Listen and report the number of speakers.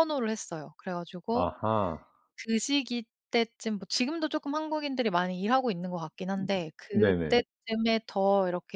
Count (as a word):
two